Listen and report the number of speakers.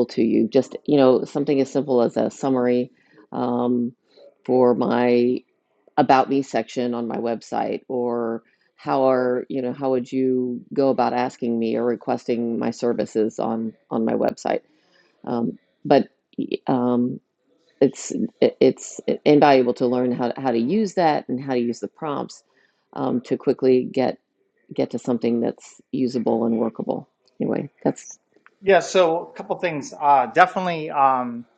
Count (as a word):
two